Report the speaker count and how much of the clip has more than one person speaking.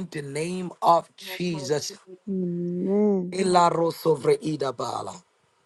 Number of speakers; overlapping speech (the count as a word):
two, no overlap